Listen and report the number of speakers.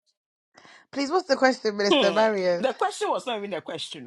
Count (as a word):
two